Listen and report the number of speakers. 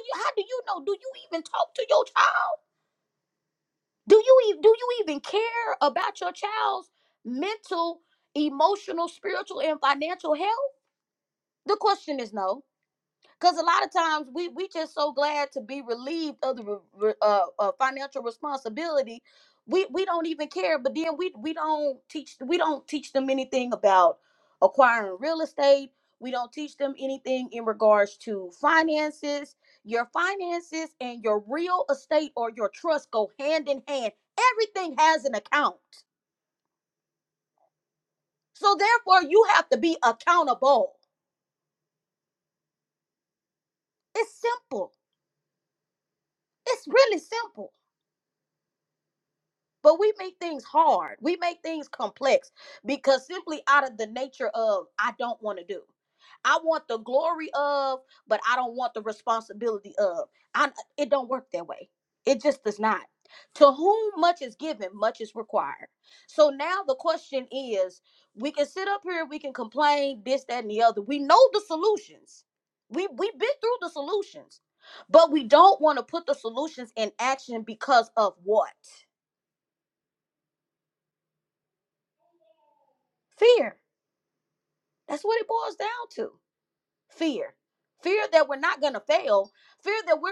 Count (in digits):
1